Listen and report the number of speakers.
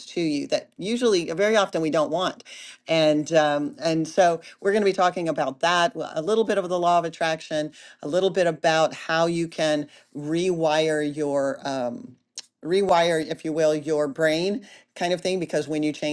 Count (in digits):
1